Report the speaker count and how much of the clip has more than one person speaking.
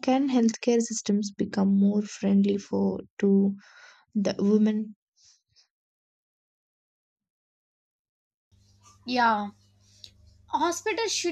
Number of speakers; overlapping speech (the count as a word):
two, no overlap